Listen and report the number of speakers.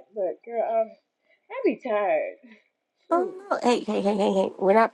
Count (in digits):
2